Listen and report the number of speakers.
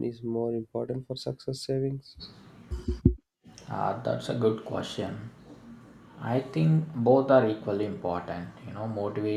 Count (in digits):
2